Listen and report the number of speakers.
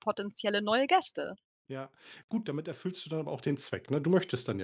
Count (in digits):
2